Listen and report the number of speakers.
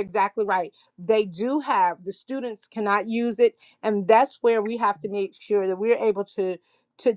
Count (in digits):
1